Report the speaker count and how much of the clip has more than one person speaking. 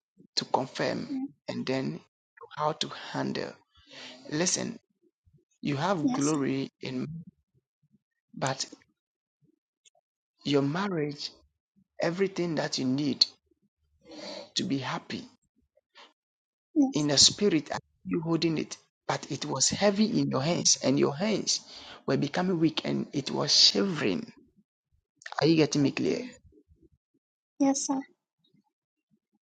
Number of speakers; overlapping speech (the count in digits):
2, about 3%